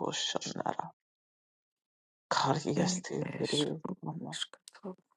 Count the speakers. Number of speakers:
two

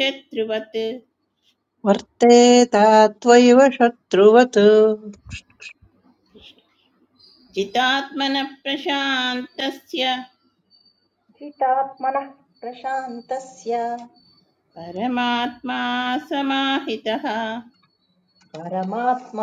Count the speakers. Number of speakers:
three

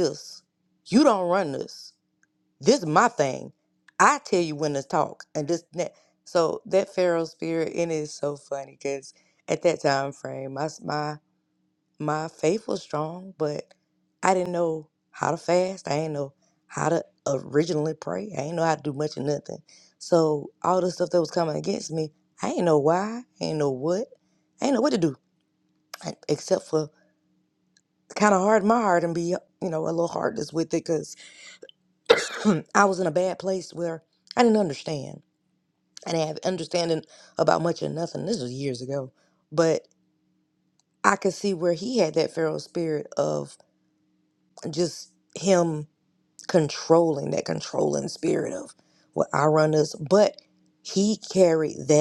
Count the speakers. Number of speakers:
one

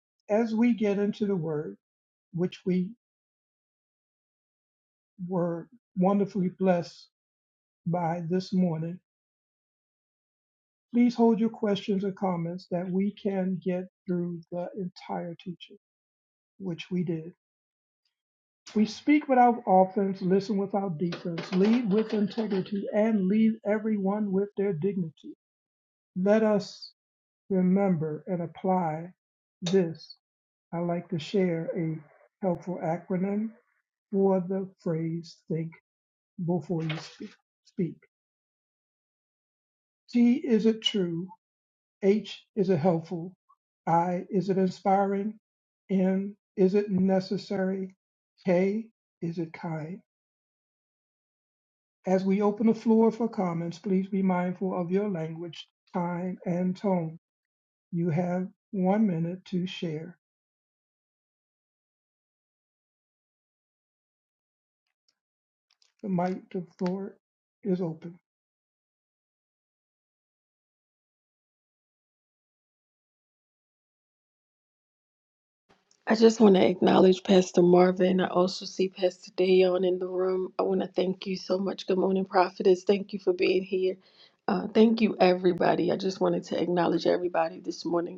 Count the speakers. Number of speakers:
two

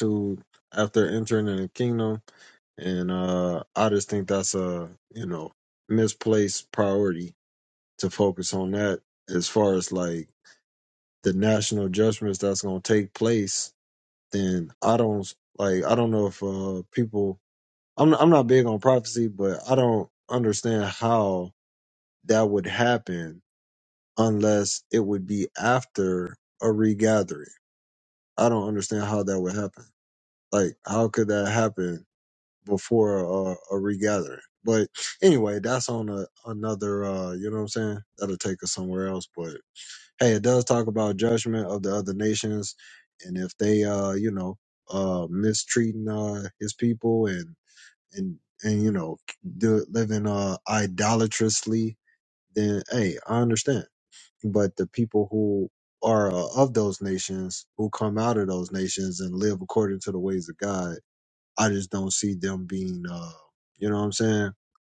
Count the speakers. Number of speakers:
one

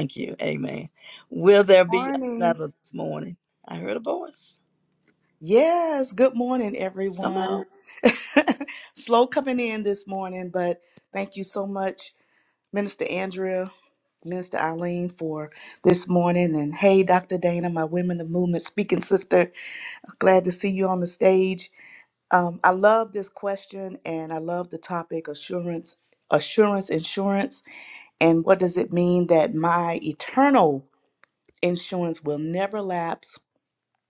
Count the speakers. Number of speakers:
two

